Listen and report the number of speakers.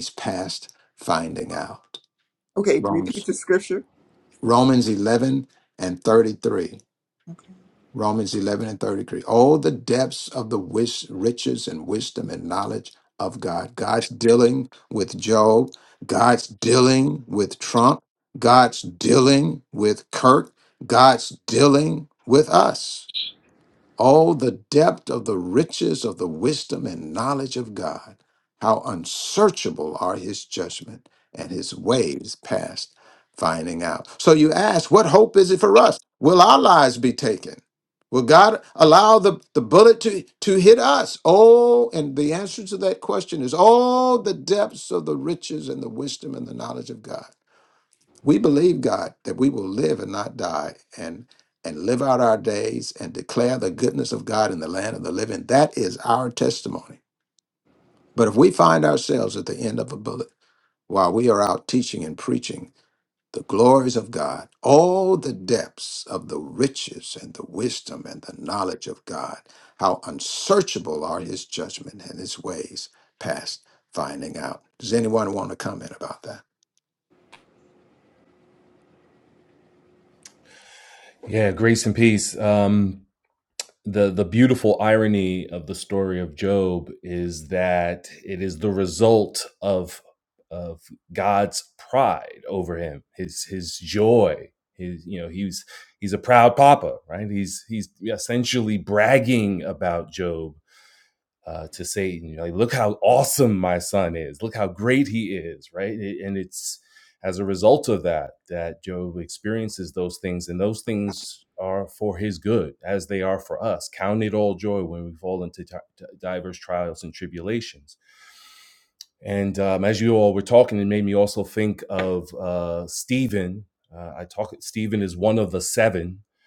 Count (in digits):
3